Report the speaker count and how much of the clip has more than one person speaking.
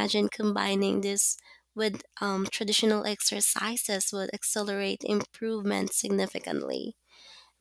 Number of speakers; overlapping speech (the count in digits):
1, no overlap